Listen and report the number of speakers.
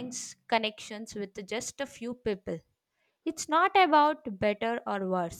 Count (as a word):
one